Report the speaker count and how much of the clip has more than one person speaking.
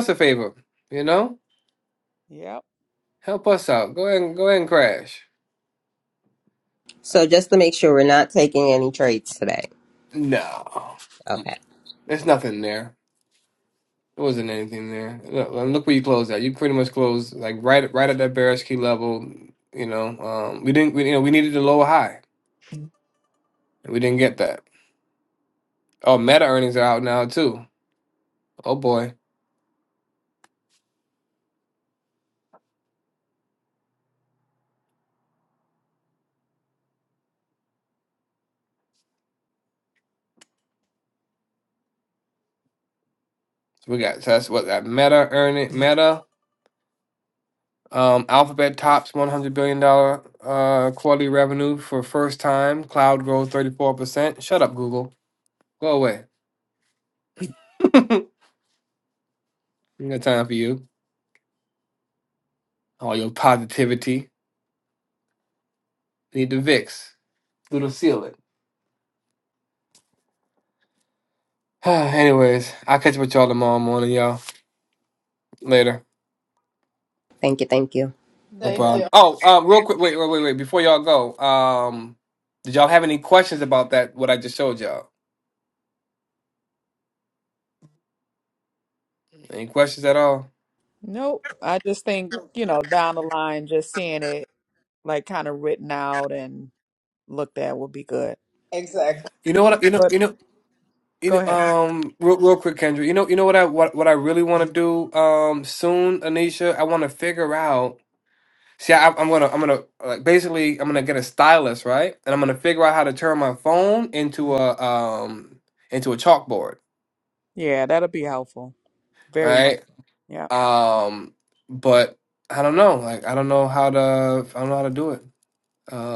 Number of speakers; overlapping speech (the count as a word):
four, about 1%